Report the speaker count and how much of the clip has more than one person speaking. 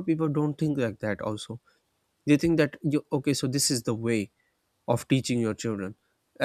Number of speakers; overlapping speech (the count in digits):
1, no overlap